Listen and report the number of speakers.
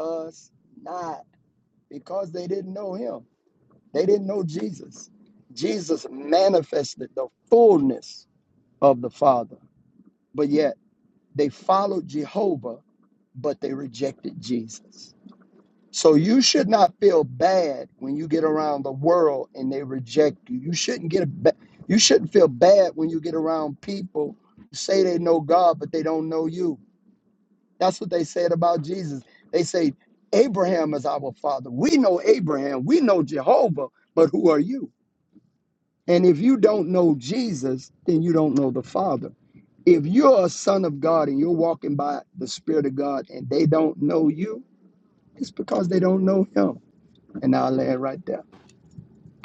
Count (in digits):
1